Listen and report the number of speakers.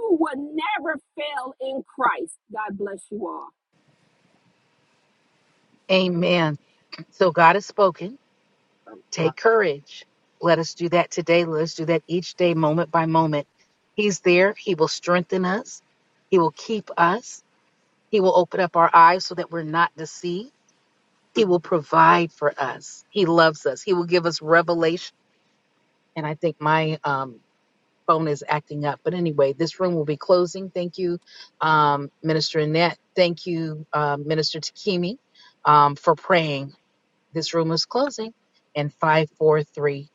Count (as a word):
two